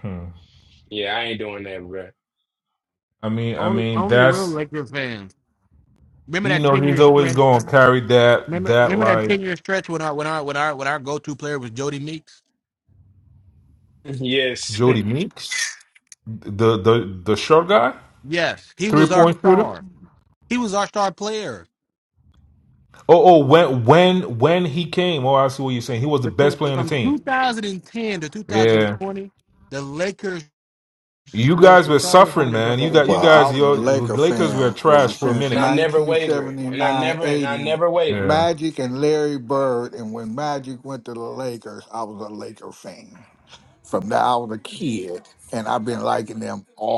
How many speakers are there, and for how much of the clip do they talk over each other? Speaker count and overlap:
4, about 23%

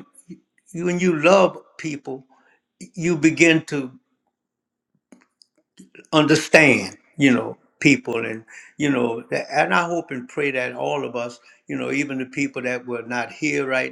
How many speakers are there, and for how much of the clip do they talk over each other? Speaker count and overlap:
1, no overlap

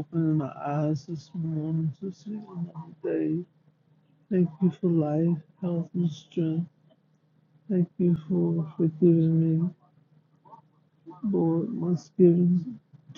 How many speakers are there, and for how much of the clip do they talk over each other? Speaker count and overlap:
1, no overlap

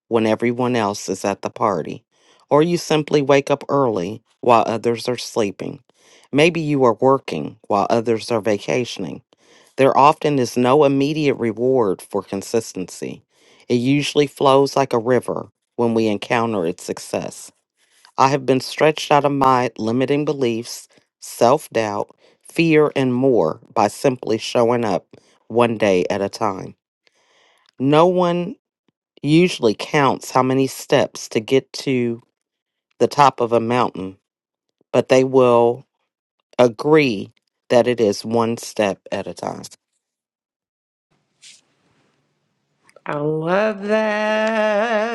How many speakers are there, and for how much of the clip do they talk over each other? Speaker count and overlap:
2, no overlap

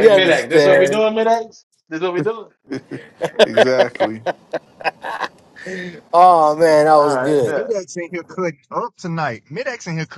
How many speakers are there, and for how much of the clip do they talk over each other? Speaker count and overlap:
4, about 18%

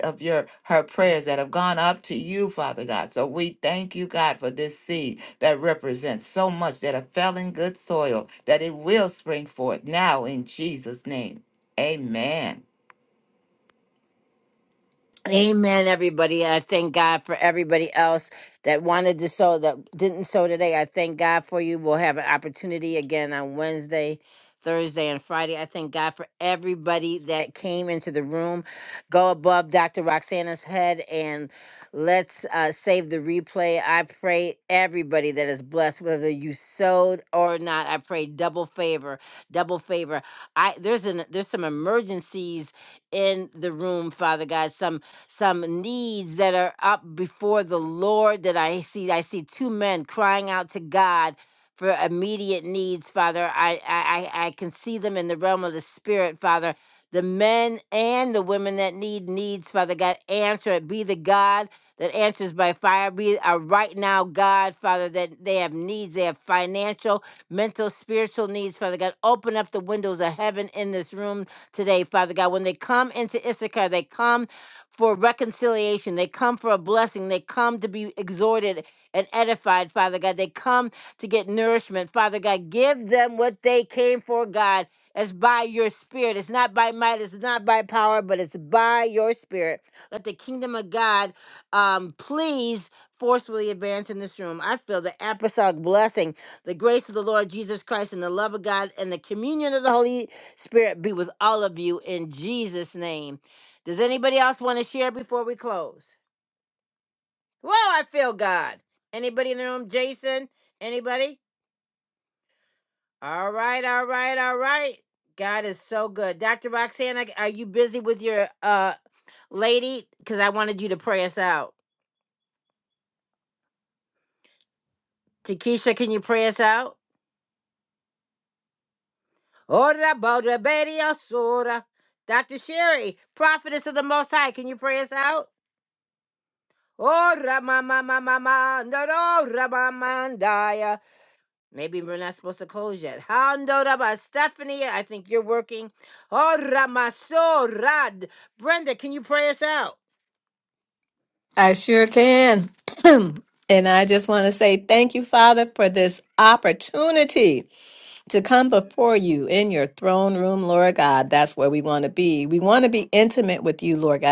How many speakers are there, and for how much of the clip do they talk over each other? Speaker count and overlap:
3, no overlap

